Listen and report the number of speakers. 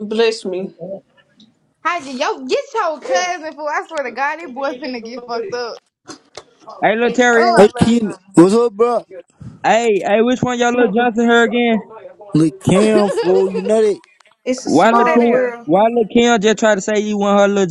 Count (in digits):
4